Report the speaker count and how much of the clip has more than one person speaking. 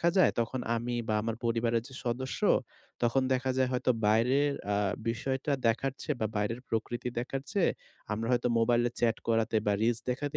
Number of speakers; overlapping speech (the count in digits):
1, no overlap